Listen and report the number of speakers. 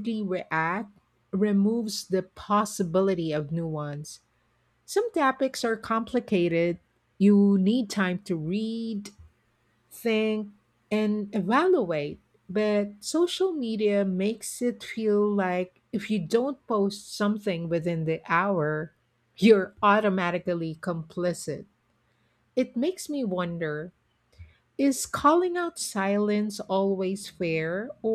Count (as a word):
one